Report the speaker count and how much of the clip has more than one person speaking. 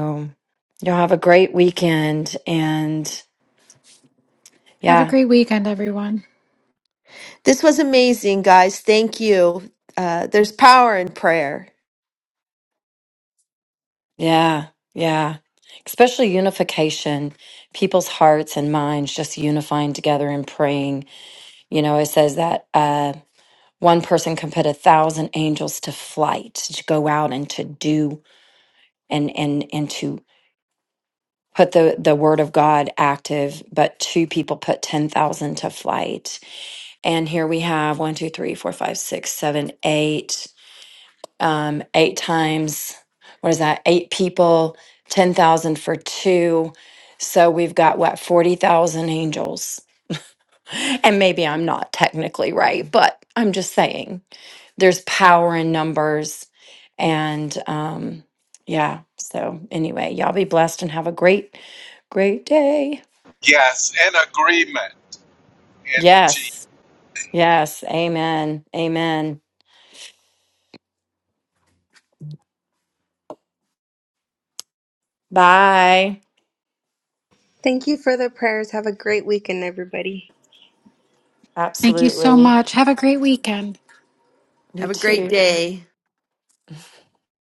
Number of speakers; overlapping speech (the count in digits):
5, about 2%